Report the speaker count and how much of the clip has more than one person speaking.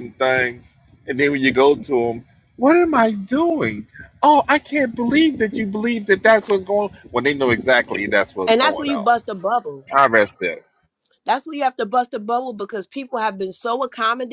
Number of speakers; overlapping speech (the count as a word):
two, about 5%